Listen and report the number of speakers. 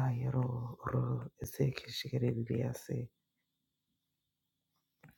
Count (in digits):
1